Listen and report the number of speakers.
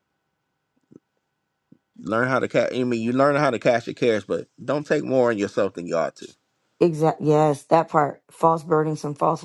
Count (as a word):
two